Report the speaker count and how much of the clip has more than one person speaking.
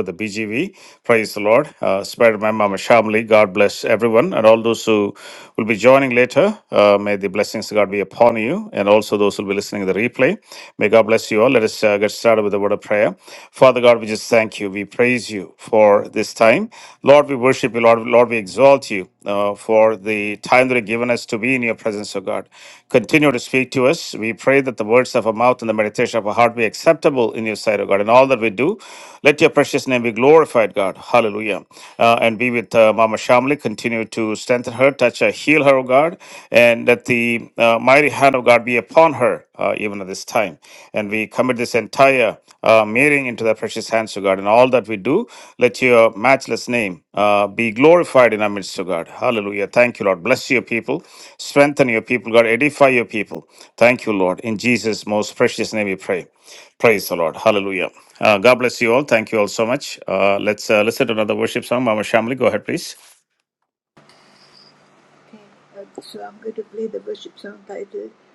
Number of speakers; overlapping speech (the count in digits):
2, no overlap